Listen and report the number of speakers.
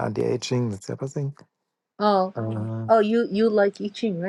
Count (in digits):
2